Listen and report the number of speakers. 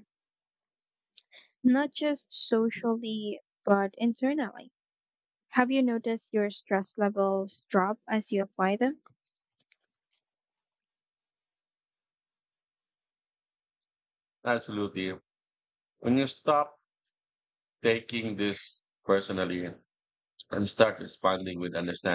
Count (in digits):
2